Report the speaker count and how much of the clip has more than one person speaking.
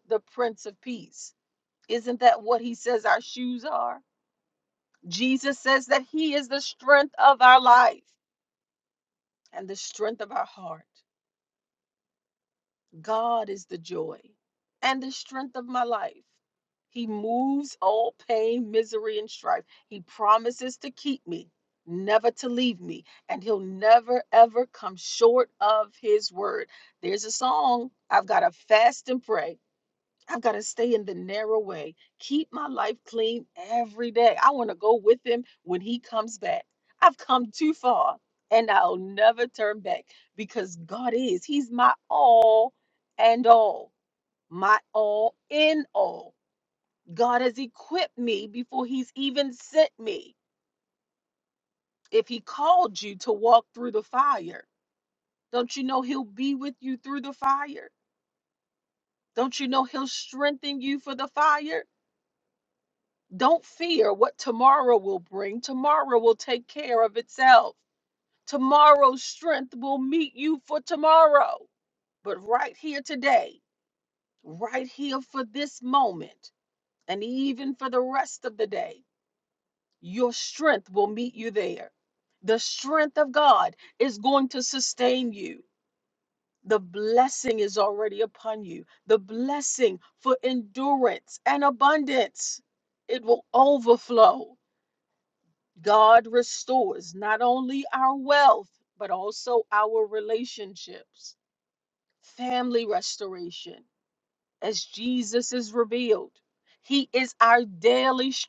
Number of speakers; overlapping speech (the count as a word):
one, no overlap